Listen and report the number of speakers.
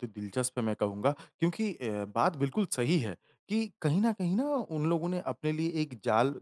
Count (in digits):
1